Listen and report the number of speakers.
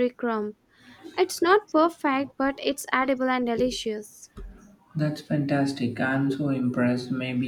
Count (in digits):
2